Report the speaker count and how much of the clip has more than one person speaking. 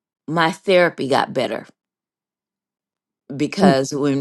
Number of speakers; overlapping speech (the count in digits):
1, no overlap